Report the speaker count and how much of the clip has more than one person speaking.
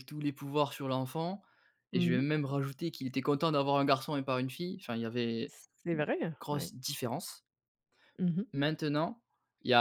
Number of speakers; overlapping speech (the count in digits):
2, about 6%